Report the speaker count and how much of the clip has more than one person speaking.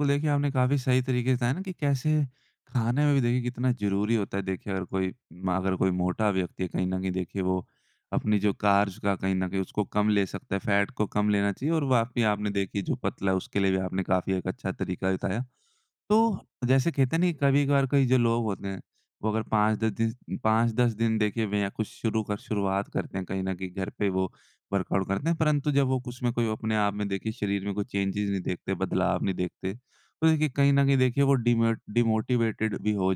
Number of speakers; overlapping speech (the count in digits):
1, no overlap